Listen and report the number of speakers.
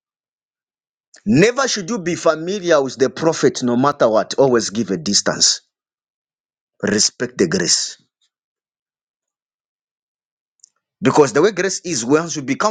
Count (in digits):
1